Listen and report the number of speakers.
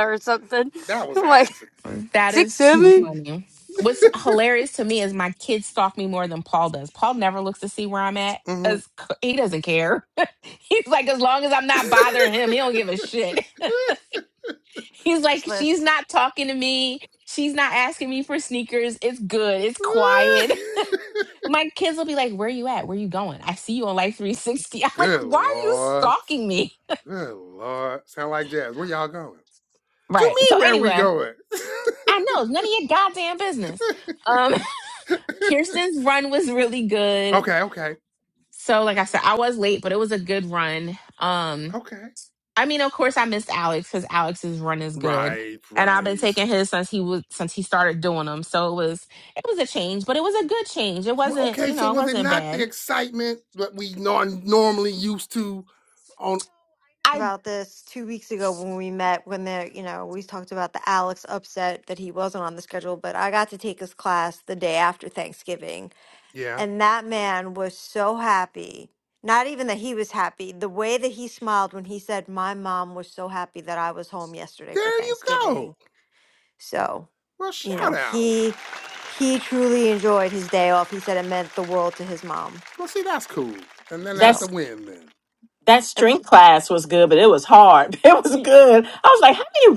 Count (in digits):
5